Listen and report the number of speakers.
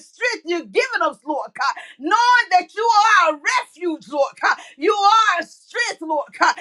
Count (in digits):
1